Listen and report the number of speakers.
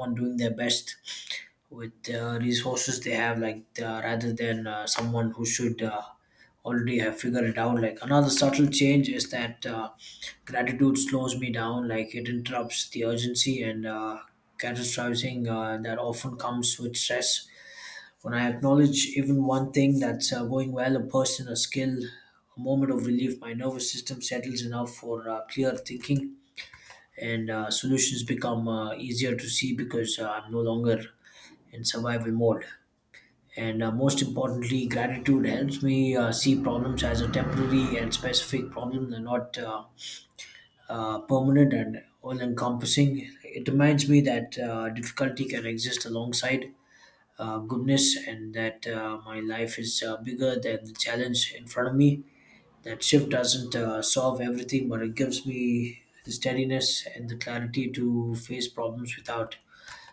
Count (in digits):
1